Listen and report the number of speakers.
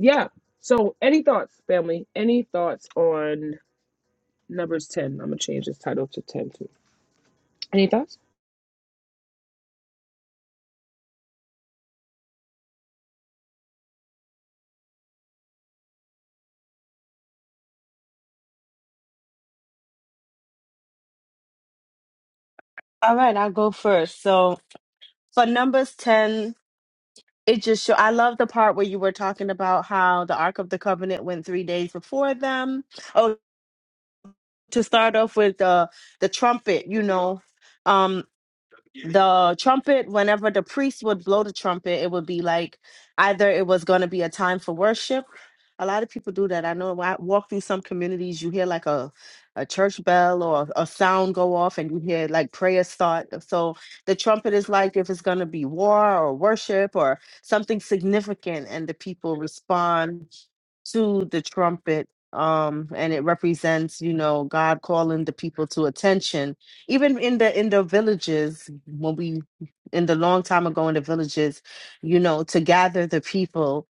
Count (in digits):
2